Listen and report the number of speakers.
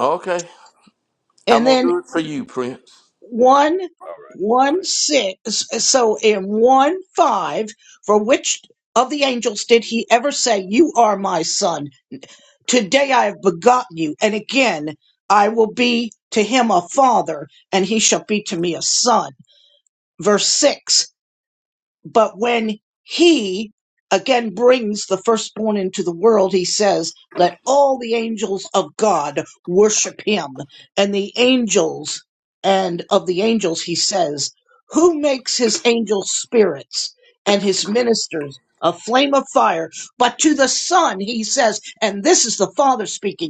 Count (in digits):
2